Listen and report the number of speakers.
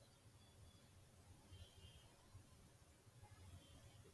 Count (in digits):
0